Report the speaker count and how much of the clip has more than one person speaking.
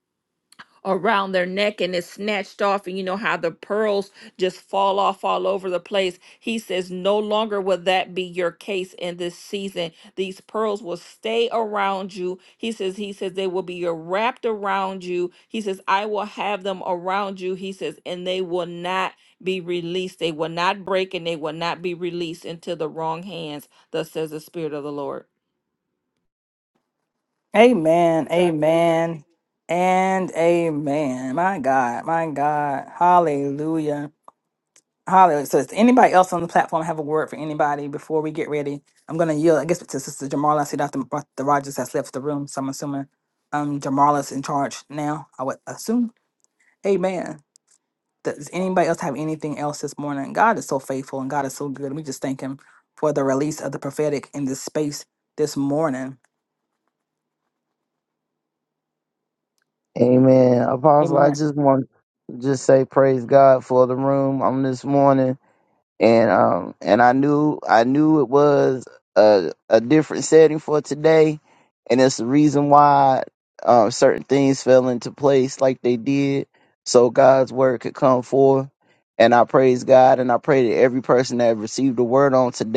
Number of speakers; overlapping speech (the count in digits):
3, under 1%